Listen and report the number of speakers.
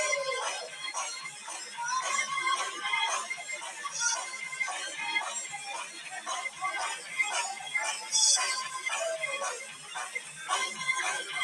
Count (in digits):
0